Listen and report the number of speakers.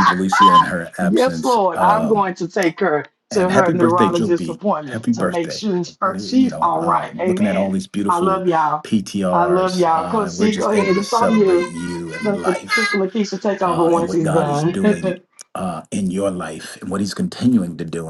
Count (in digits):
2